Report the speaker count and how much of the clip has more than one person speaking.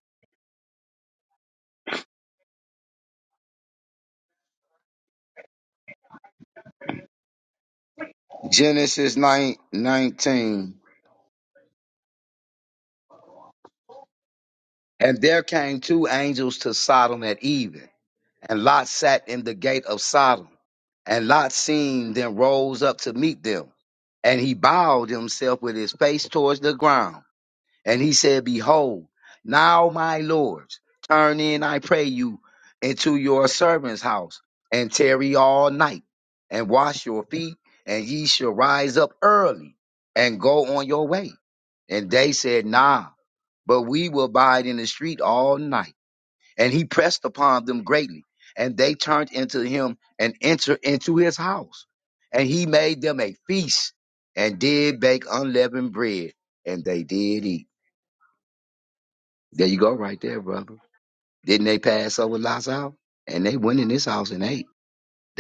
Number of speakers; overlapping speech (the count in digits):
1, no overlap